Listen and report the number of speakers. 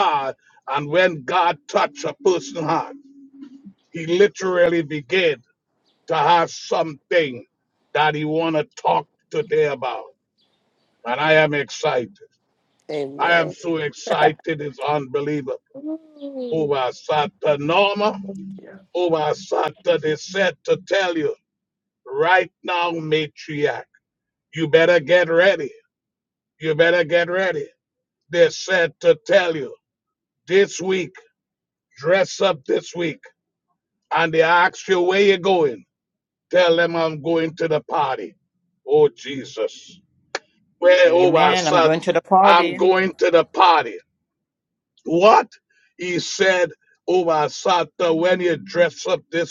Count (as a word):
three